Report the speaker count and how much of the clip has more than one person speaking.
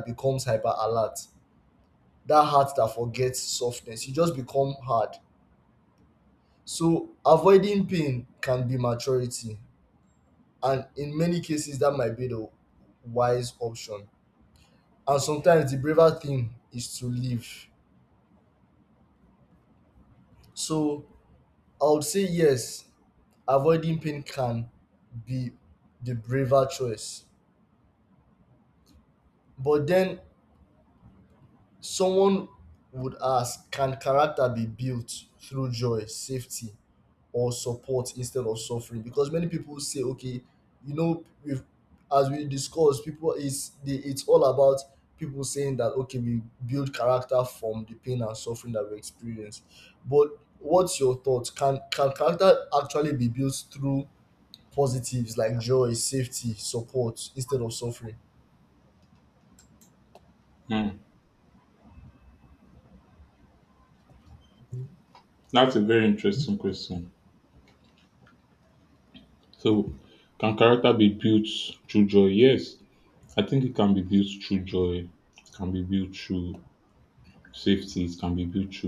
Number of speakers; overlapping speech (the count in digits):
2, no overlap